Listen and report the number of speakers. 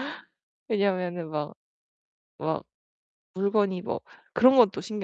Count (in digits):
1